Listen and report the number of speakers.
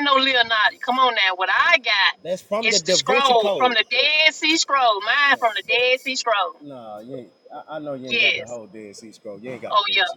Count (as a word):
two